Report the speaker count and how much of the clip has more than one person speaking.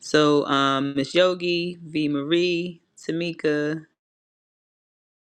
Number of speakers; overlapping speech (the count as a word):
one, no overlap